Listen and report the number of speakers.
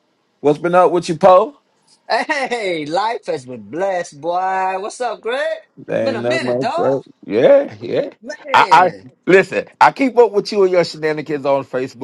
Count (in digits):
2